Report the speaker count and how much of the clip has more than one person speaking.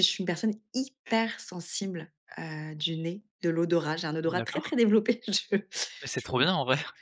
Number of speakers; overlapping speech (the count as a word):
two, about 9%